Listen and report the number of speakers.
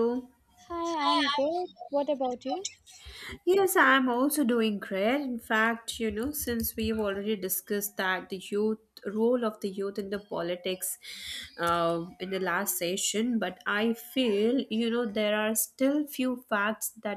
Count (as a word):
two